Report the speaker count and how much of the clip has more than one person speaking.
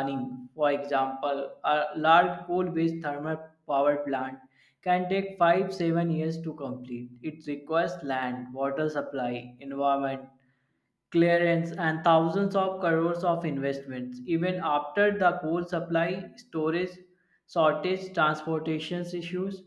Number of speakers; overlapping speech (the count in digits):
1, no overlap